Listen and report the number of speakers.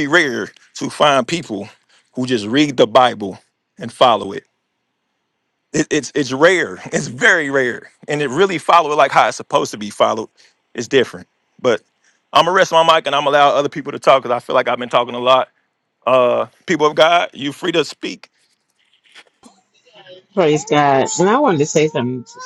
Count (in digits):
2